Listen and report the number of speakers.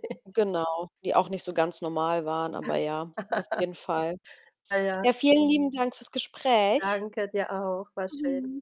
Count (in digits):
2